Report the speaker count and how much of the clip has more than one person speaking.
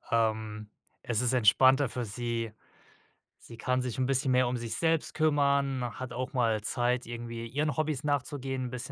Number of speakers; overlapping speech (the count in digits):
1, no overlap